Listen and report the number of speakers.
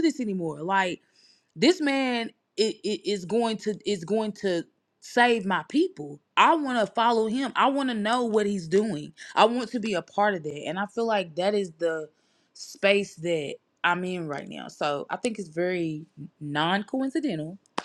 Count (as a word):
one